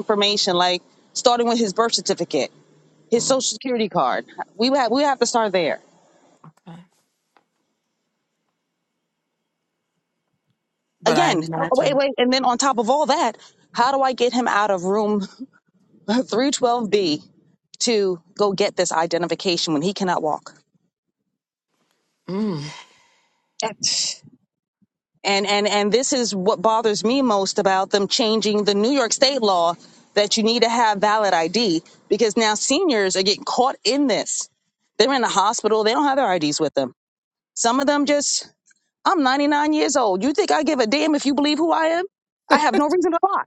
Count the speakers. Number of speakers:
2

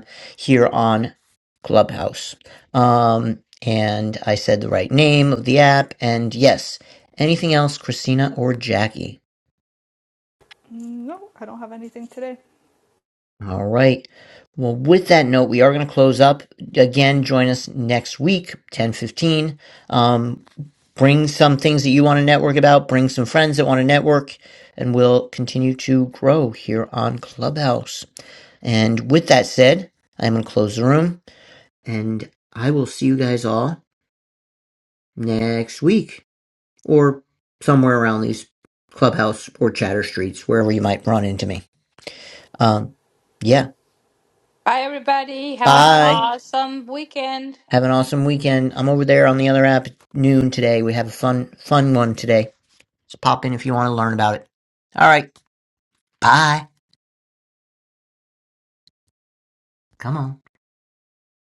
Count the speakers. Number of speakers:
3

